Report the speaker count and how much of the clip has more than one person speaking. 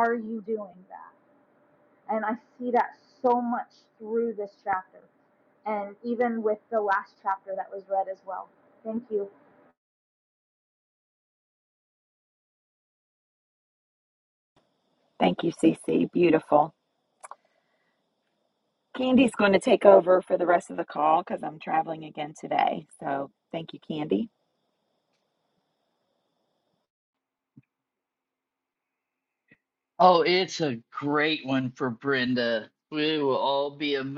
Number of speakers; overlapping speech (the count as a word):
three, no overlap